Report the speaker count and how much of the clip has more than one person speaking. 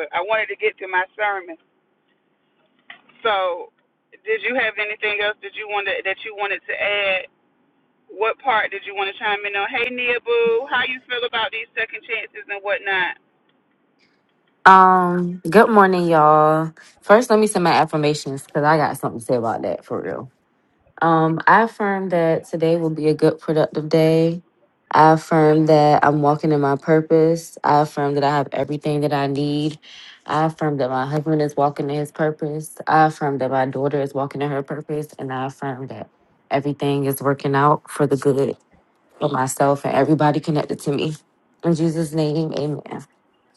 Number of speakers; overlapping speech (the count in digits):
2, no overlap